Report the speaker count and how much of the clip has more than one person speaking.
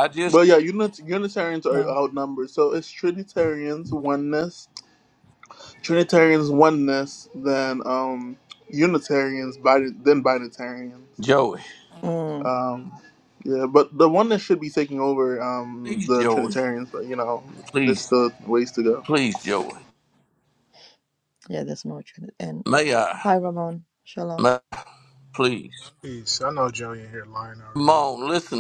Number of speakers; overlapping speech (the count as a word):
four, about 5%